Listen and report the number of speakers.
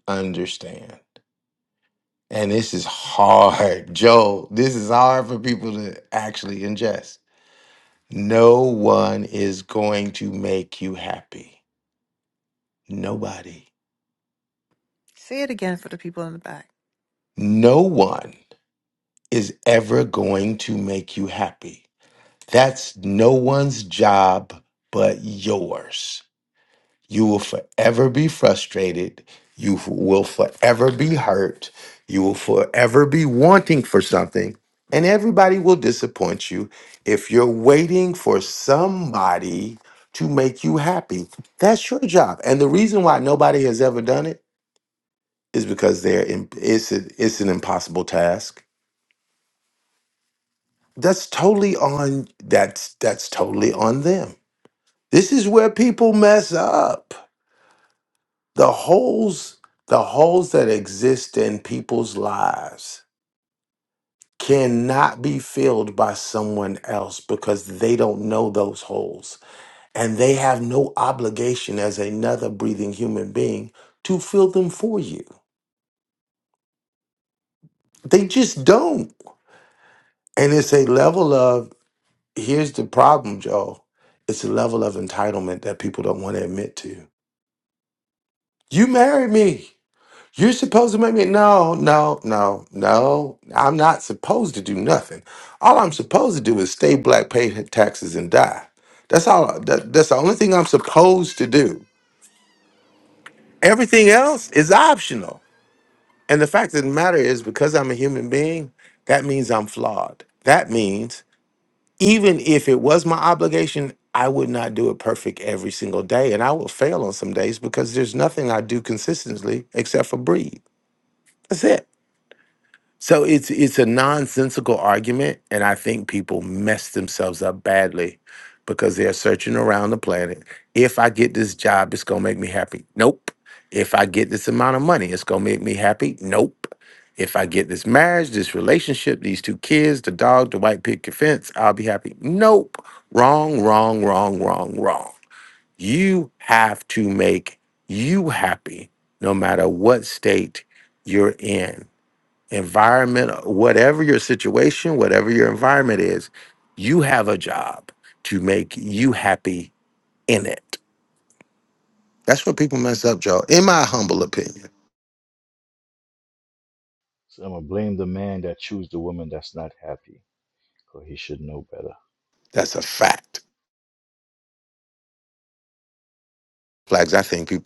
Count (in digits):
3